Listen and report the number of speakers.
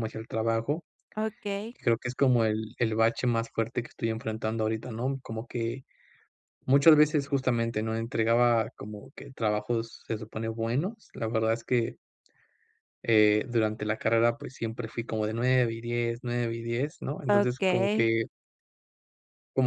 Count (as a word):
two